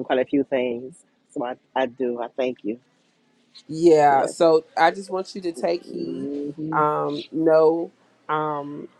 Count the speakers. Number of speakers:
two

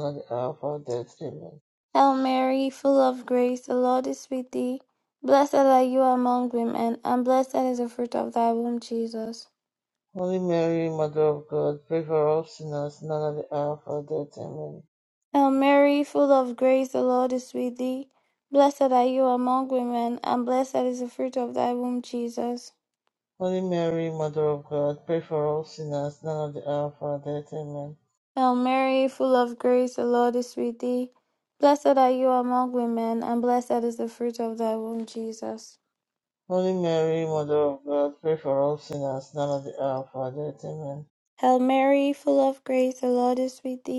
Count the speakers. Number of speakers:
two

